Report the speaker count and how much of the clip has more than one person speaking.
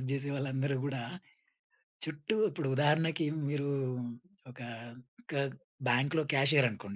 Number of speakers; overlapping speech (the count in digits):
1, no overlap